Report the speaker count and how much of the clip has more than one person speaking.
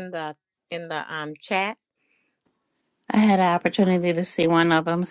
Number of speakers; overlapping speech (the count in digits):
2, no overlap